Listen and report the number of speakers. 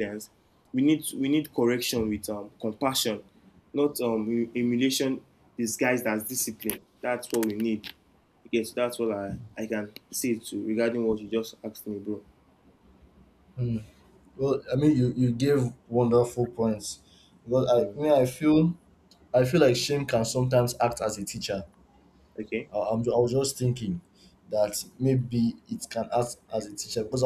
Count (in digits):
2